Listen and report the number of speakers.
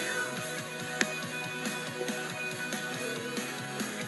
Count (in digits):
0